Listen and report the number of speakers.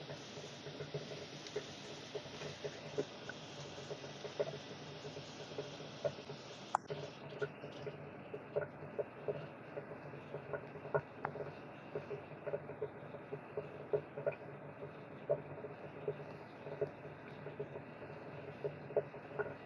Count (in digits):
0